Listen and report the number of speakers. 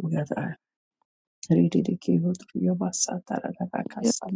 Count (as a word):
one